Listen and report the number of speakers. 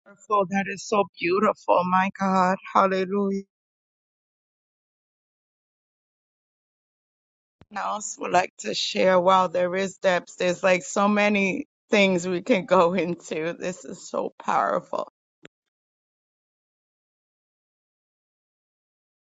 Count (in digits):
1